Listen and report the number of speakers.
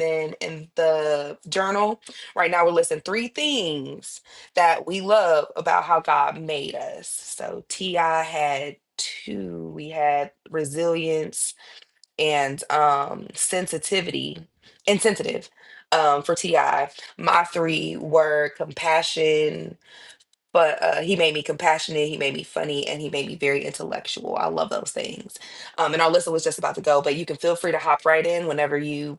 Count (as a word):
one